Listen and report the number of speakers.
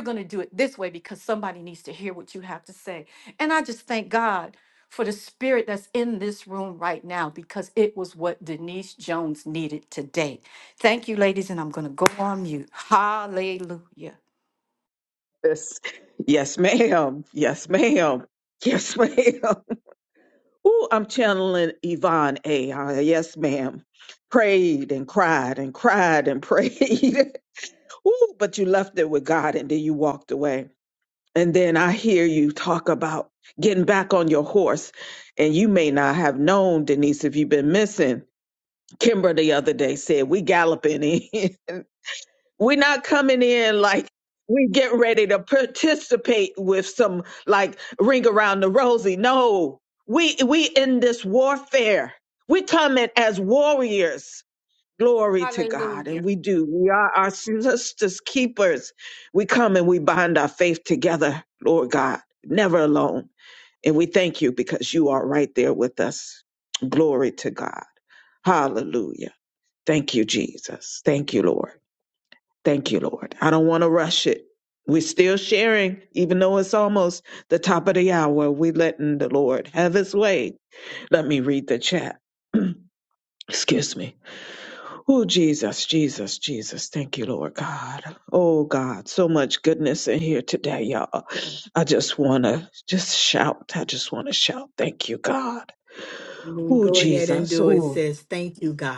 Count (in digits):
3